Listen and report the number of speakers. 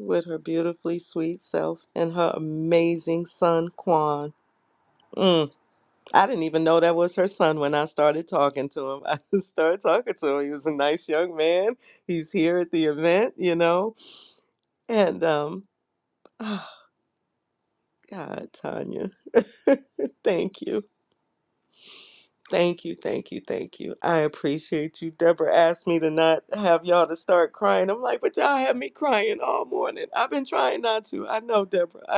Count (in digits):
1